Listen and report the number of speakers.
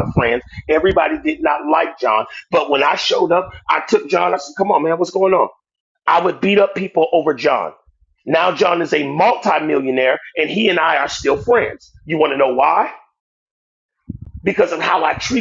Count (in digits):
1